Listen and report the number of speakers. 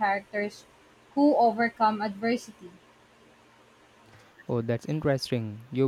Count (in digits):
2